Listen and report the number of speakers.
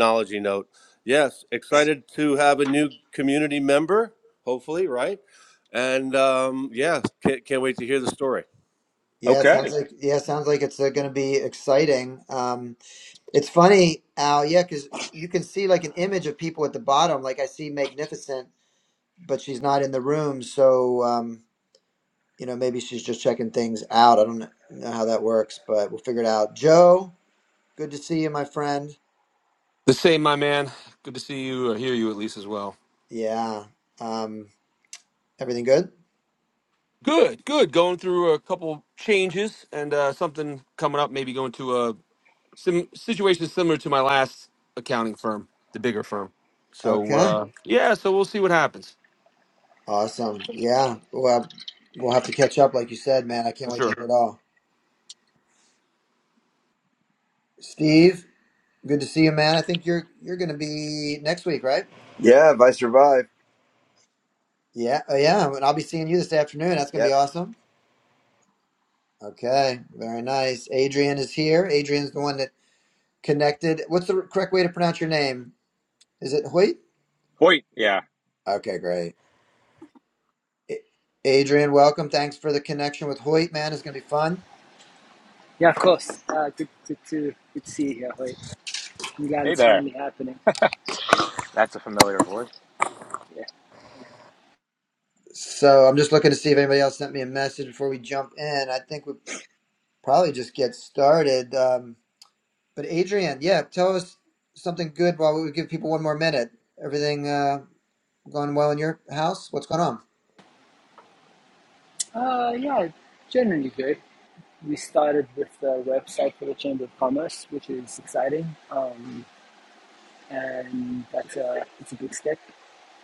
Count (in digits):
6